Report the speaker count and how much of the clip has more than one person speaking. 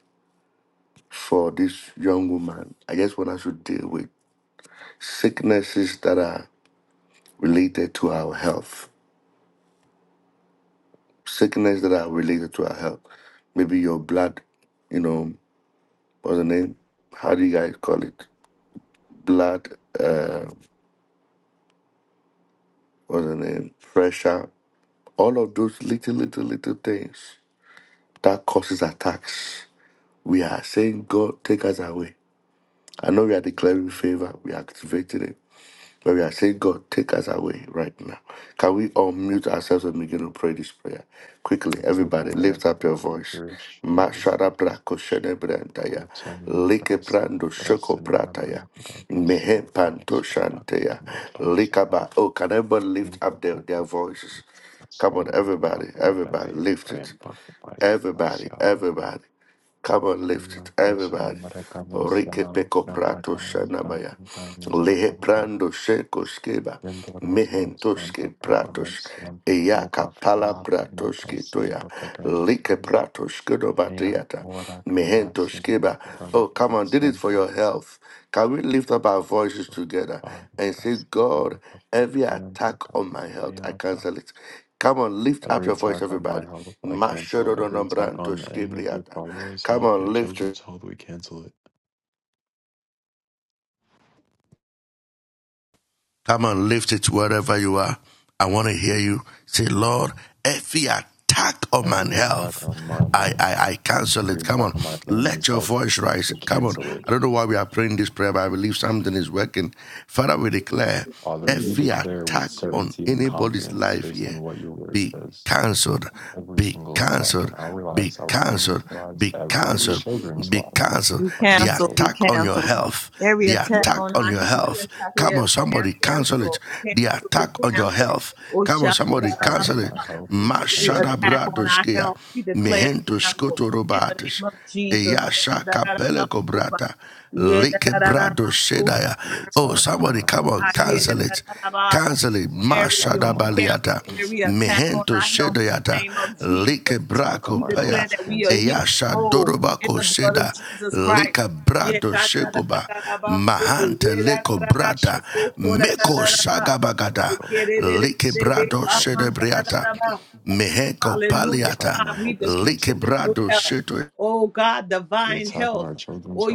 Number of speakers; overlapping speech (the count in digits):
4, about 32%